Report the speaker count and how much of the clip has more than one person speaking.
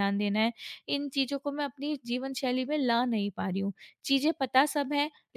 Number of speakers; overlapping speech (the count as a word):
one, no overlap